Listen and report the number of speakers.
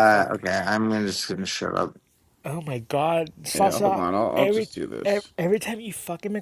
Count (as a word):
three